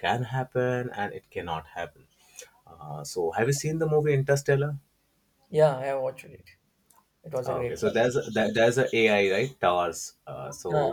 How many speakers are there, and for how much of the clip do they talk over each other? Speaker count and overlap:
2, about 7%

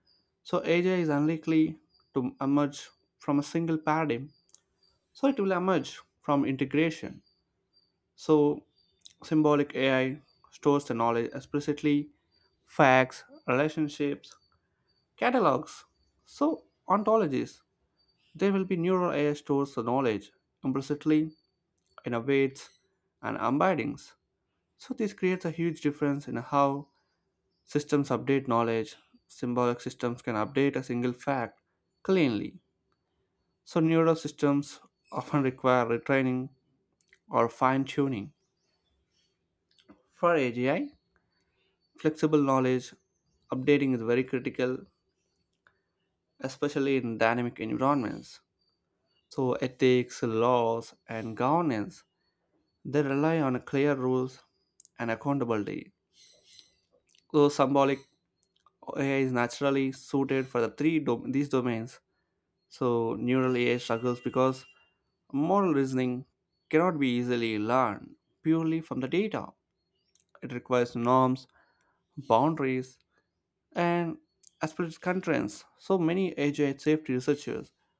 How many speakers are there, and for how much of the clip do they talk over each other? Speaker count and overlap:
1, no overlap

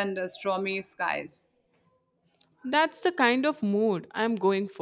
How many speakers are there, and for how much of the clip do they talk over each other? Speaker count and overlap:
2, no overlap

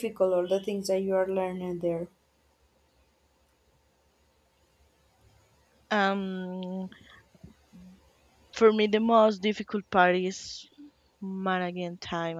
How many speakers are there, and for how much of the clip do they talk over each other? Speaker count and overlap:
2, no overlap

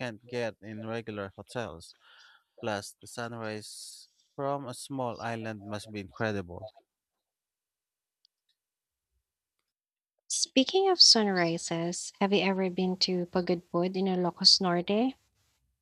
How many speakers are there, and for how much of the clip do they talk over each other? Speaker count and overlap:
2, no overlap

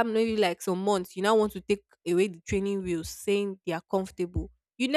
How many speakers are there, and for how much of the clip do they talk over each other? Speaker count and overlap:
1, no overlap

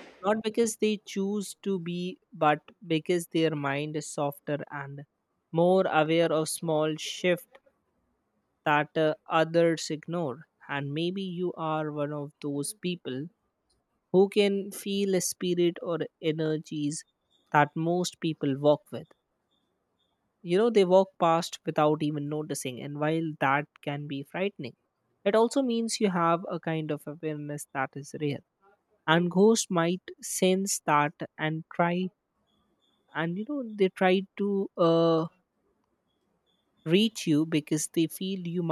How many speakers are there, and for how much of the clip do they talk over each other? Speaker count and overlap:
1, no overlap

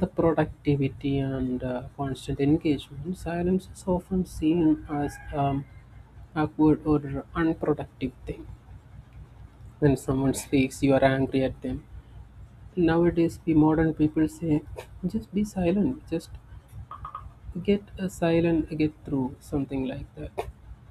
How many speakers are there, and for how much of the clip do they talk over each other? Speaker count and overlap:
1, no overlap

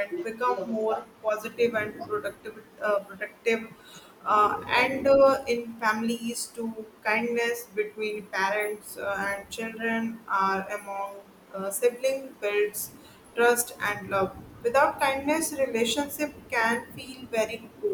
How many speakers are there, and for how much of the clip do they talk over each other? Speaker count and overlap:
1, no overlap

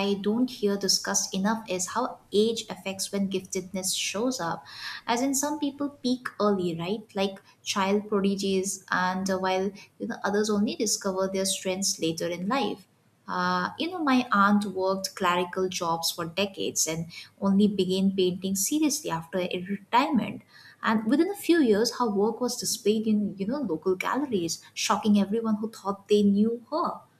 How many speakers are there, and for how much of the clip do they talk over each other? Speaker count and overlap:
1, no overlap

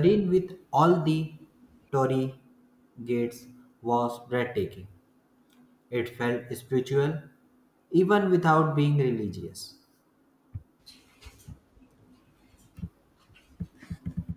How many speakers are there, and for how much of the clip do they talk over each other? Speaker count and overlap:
1, no overlap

